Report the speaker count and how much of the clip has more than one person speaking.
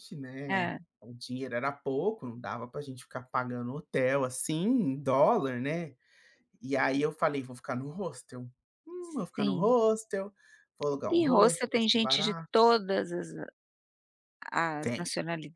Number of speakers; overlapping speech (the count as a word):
two, about 13%